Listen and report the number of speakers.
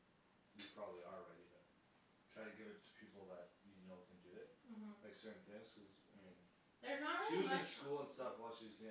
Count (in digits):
2